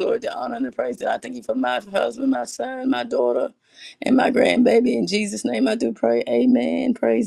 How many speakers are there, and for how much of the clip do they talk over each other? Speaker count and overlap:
1, no overlap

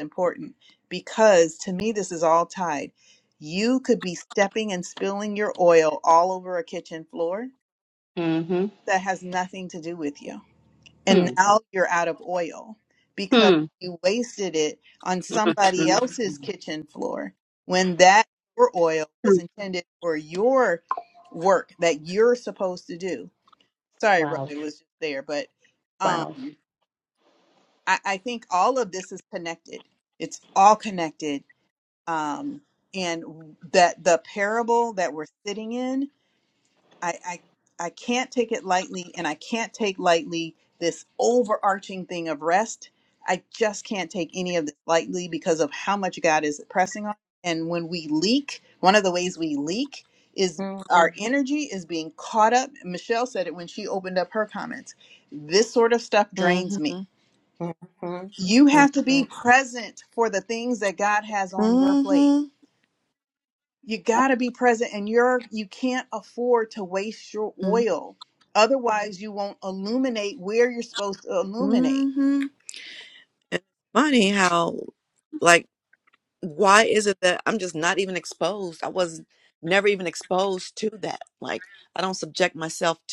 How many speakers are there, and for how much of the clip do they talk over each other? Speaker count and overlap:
4, about 6%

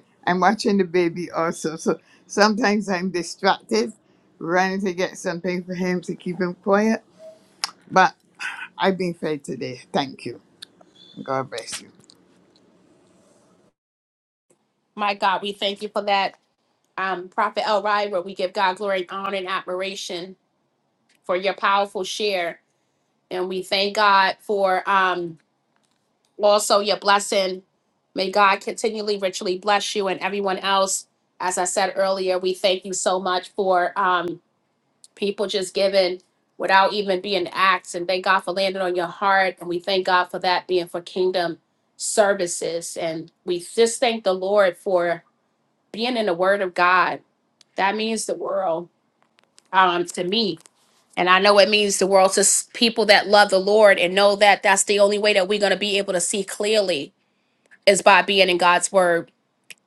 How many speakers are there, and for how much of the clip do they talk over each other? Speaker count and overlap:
2, no overlap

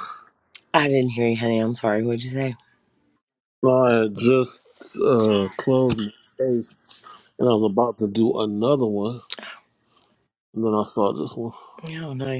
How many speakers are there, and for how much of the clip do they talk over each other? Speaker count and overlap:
2, no overlap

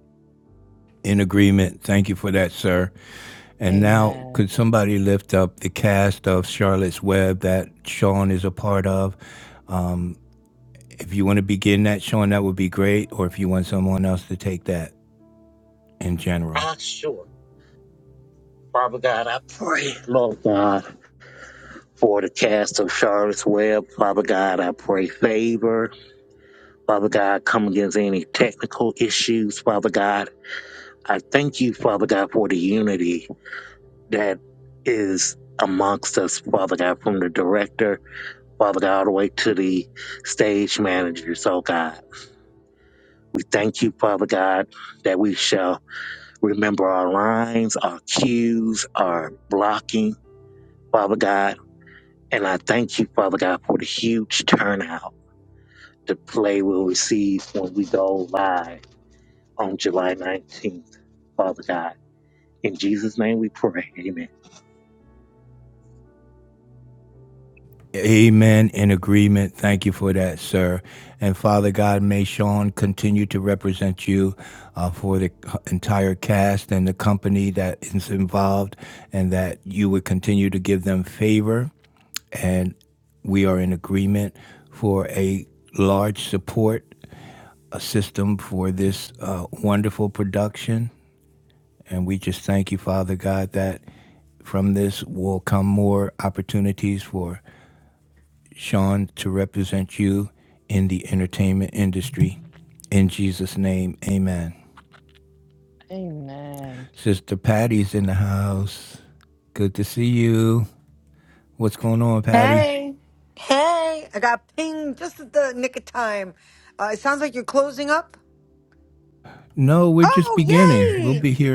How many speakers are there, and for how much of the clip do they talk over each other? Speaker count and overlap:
4, about 2%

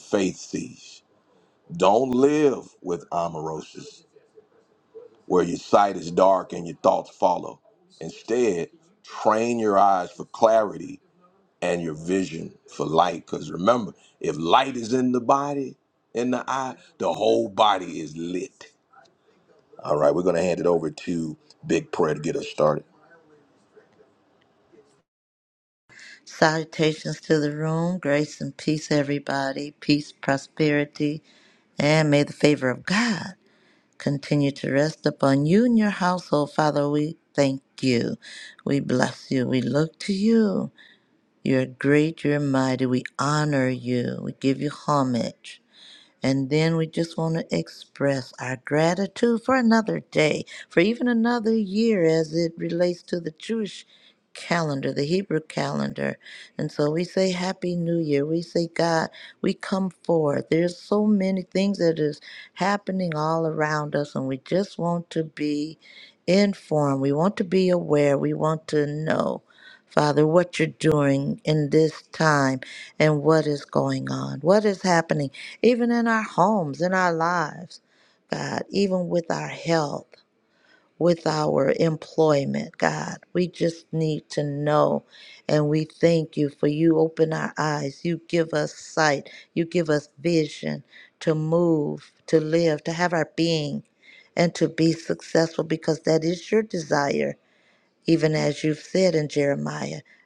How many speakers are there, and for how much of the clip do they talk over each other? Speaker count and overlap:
2, no overlap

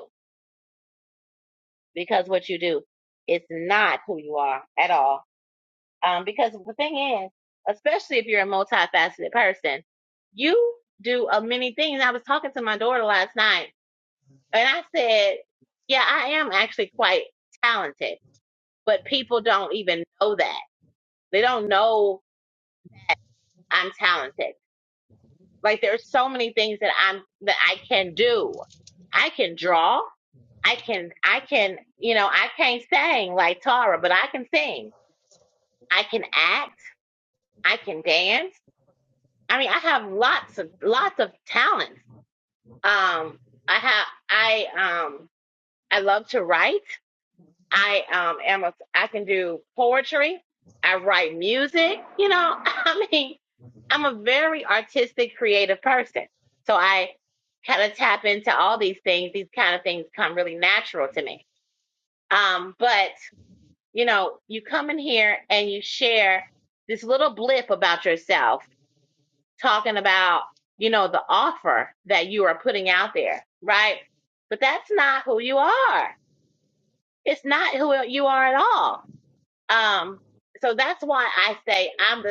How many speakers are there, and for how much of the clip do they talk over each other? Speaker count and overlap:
1, no overlap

